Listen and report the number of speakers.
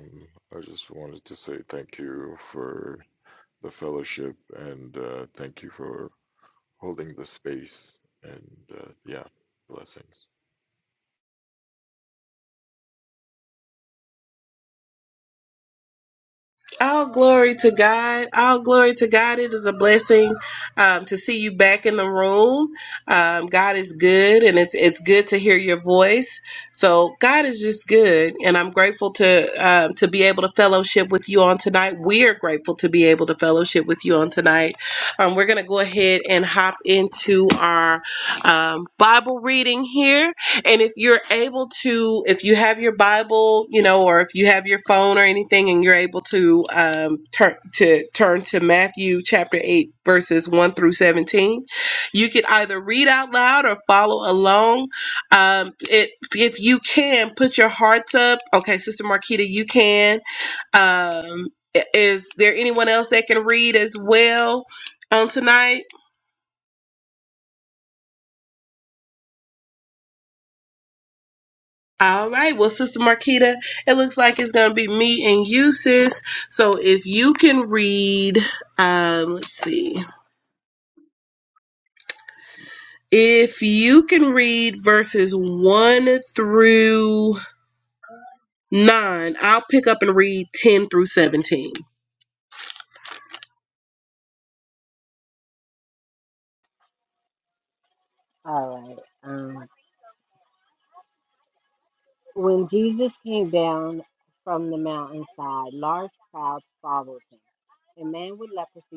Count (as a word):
three